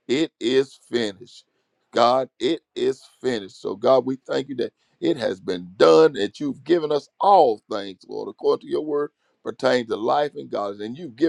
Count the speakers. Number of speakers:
1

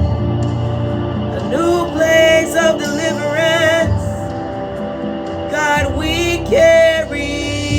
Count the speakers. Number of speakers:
1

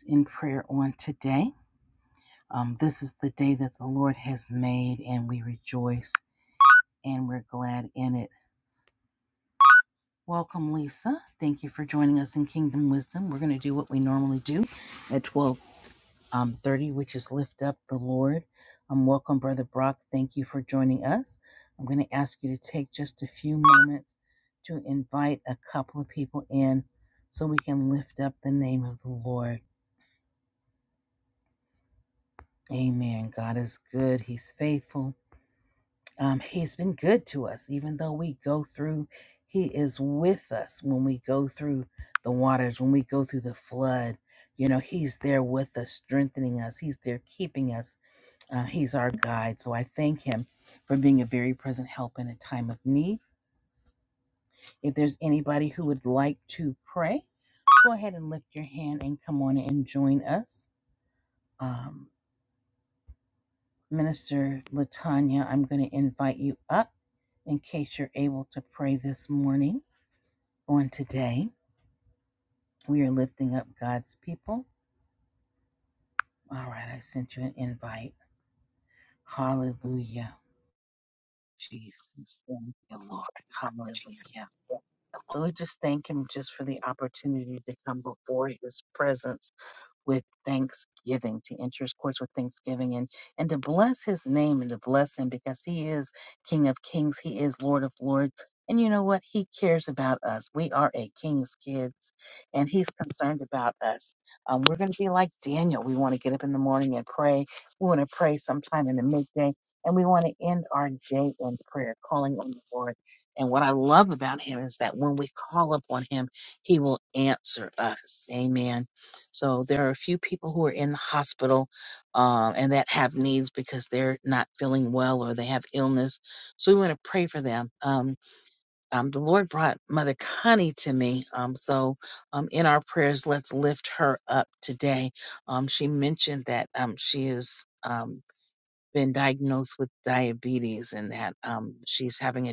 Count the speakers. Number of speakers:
1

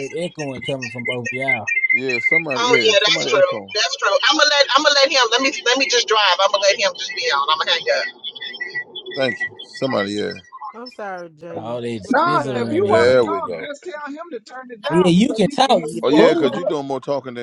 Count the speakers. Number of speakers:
5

